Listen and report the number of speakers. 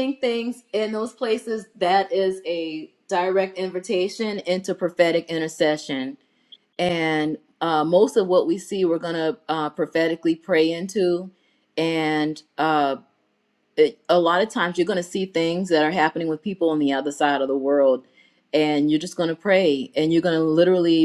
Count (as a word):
one